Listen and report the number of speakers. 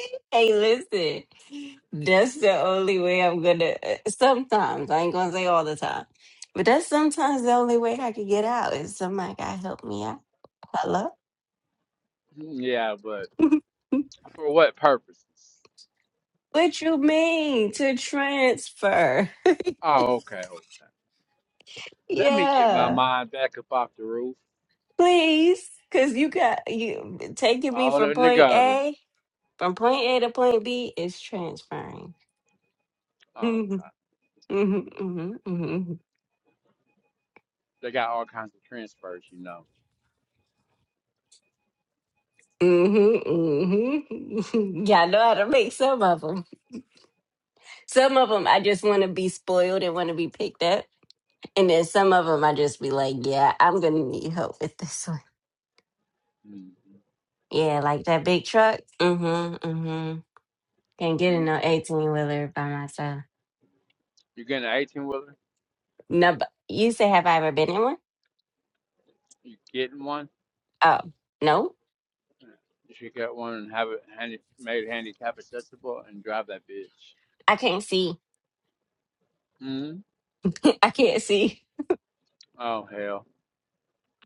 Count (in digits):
2